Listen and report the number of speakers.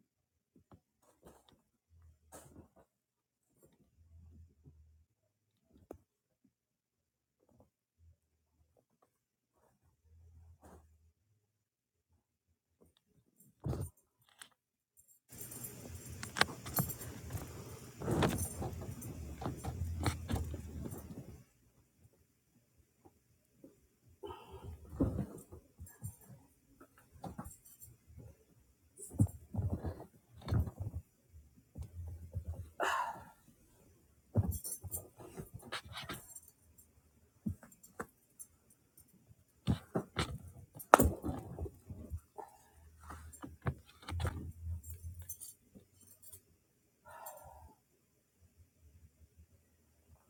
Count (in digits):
0